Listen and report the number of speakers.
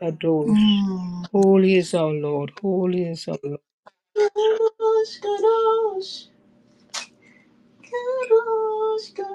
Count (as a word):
two